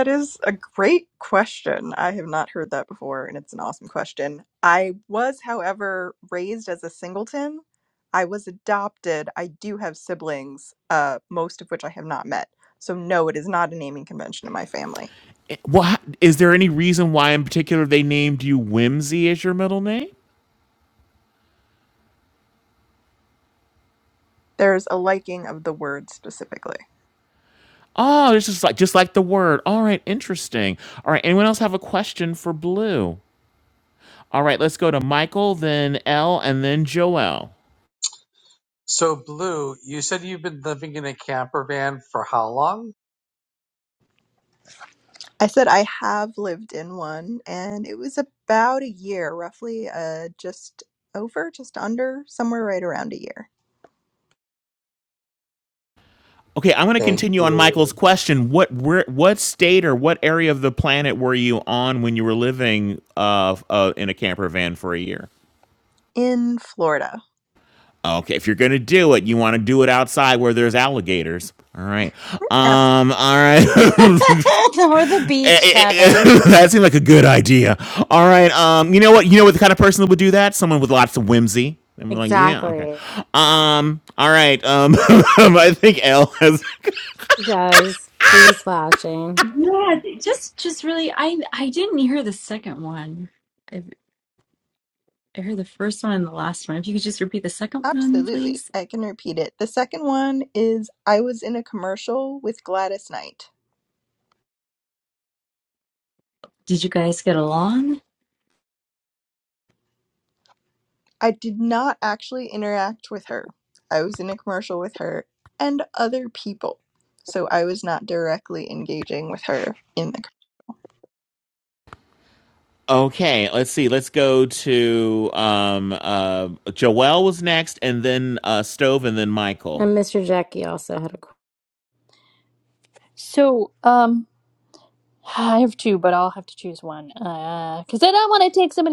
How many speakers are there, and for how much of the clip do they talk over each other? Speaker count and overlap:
six, about 3%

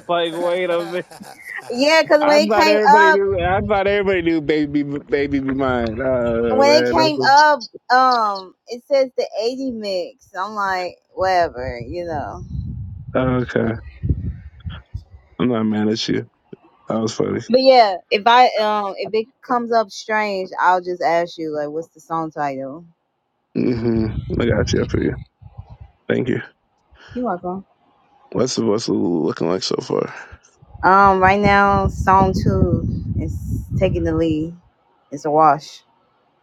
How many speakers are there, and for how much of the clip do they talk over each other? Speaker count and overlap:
two, about 5%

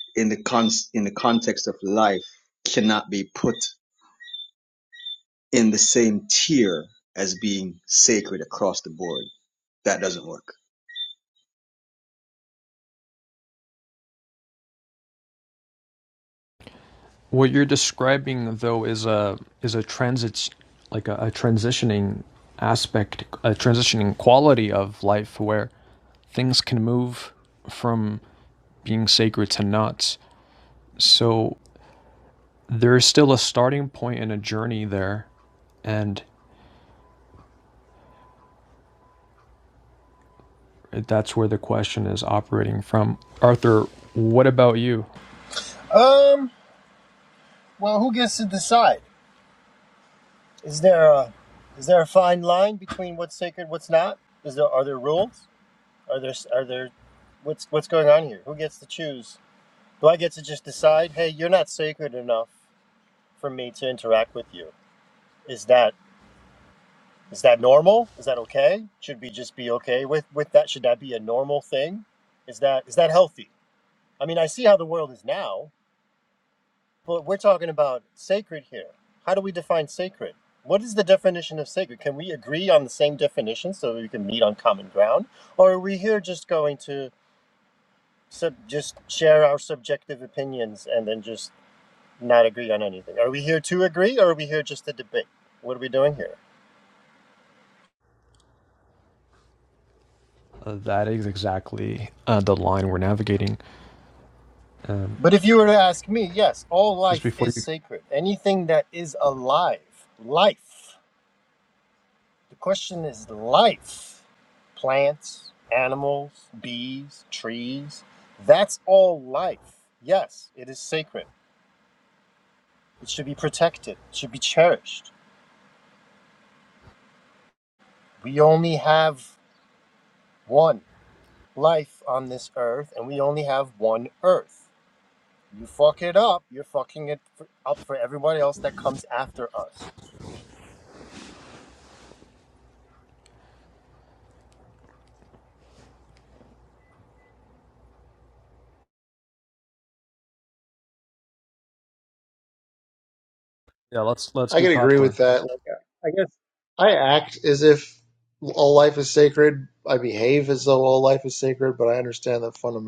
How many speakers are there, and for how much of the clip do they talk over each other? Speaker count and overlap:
four, about 1%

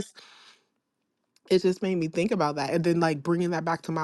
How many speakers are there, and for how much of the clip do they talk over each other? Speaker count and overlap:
one, no overlap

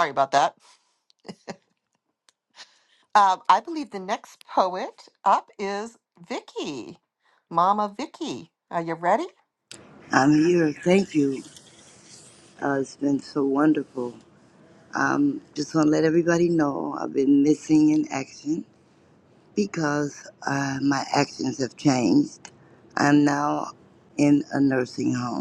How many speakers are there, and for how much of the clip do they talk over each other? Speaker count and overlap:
two, no overlap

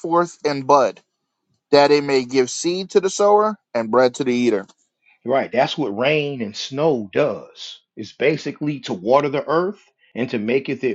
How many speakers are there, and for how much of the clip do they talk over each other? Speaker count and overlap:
two, no overlap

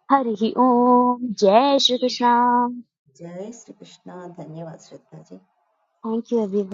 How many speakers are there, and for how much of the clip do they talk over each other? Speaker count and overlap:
two, no overlap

